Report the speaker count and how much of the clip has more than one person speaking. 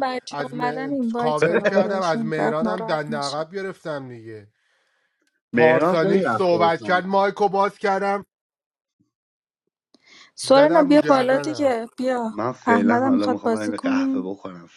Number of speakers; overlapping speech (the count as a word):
three, about 52%